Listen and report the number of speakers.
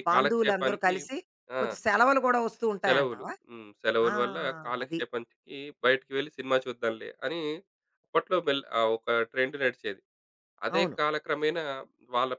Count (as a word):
two